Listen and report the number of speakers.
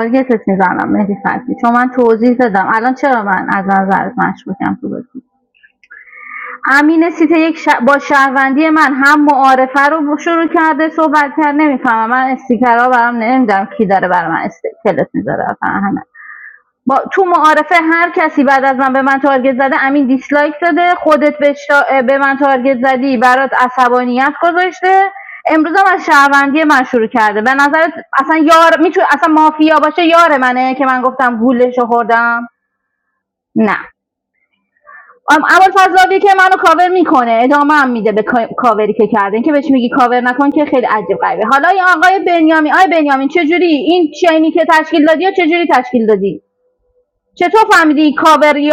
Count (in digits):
1